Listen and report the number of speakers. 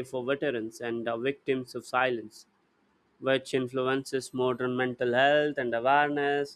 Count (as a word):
one